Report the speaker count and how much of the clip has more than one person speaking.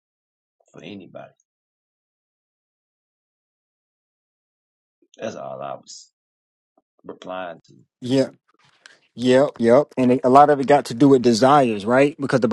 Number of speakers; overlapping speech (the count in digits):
2, no overlap